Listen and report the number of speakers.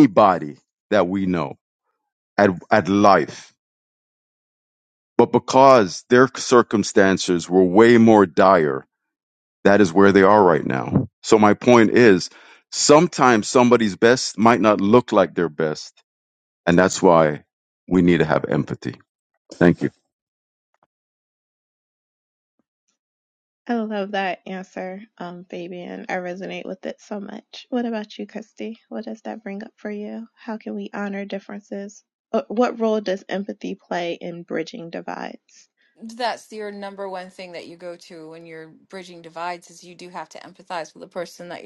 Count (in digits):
3